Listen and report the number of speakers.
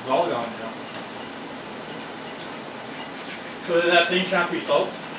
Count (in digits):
1